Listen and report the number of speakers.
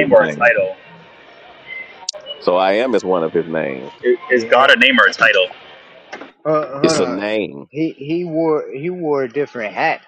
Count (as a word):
three